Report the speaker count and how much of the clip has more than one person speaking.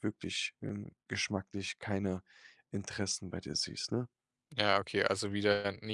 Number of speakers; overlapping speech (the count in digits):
2, no overlap